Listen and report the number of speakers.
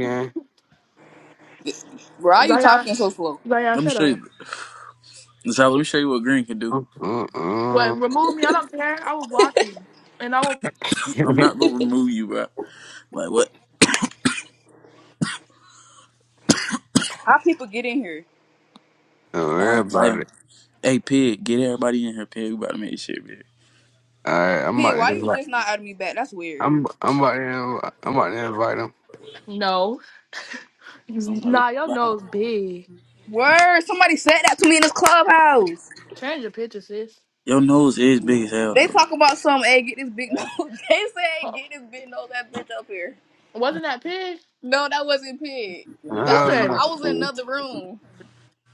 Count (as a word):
four